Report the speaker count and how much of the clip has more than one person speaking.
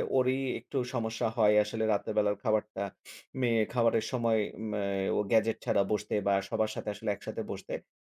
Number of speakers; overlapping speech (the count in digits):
1, no overlap